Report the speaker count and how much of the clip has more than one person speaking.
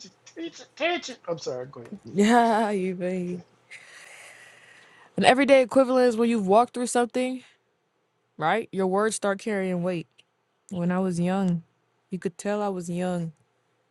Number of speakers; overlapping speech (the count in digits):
2, about 1%